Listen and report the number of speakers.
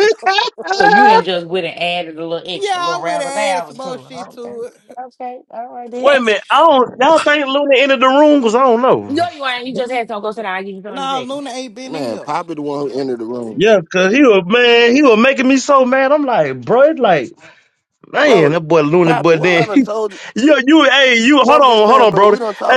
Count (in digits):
4